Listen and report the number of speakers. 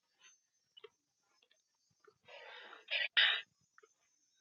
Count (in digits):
0